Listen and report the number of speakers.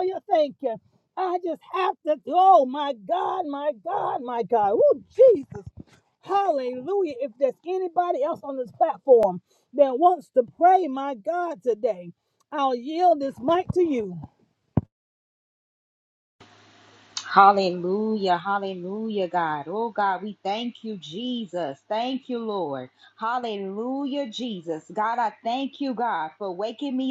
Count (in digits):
2